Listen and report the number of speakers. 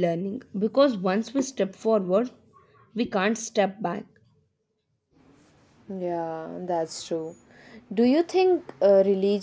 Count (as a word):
two